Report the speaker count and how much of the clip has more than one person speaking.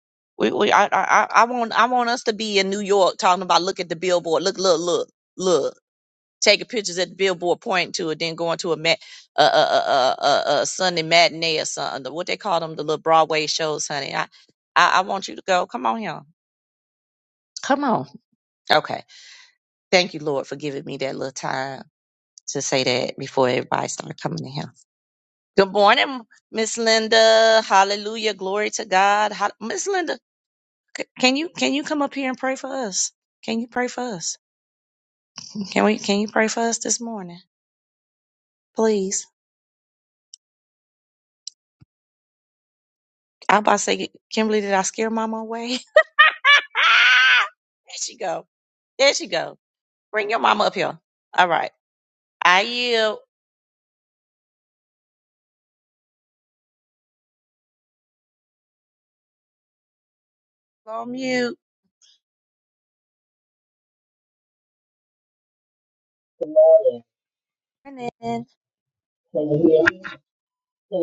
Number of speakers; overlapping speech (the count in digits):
2, no overlap